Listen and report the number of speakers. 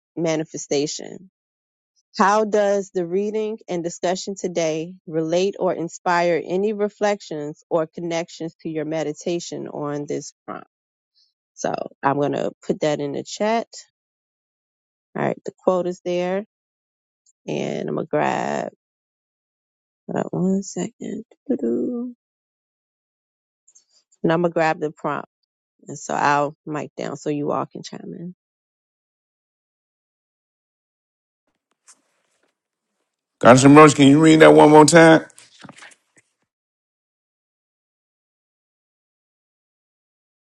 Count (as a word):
two